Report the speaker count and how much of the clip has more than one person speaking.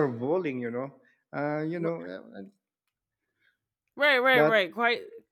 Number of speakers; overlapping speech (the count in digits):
2, about 7%